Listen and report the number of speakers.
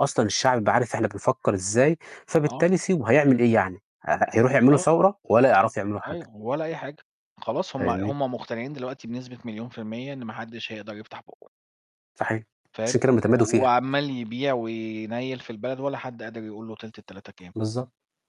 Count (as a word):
two